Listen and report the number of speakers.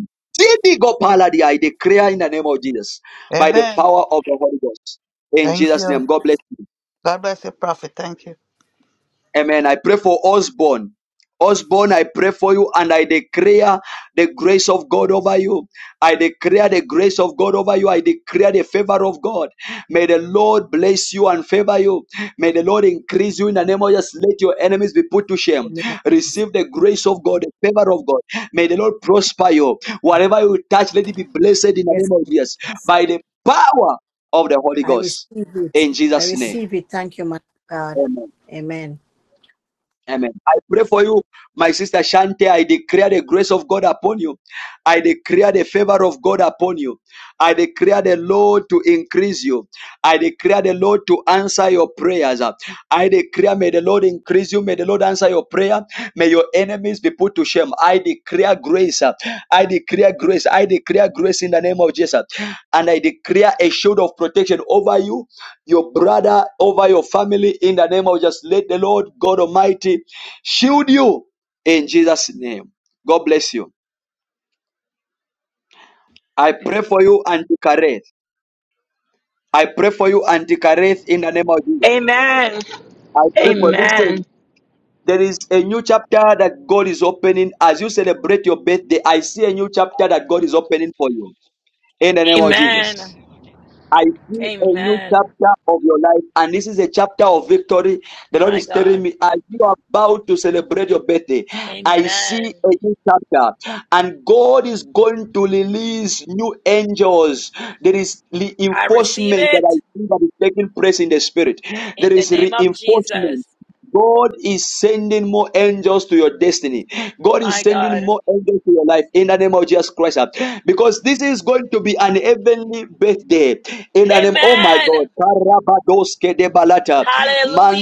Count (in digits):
4